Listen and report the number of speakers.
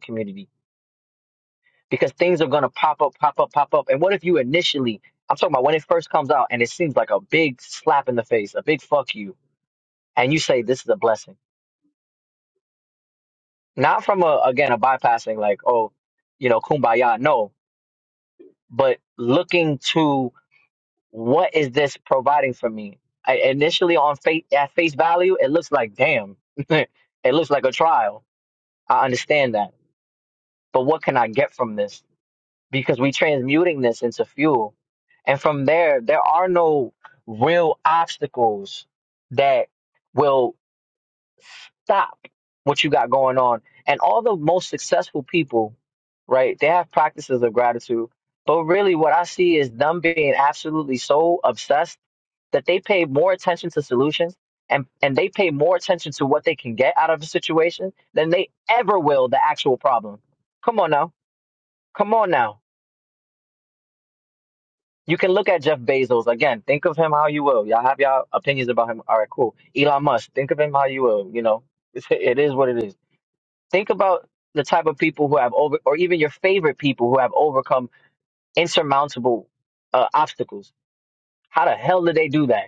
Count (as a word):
one